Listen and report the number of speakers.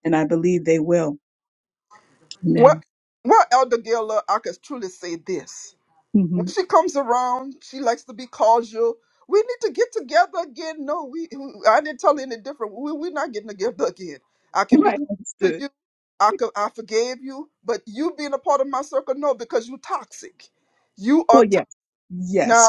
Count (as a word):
two